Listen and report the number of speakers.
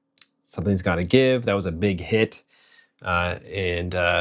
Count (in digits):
1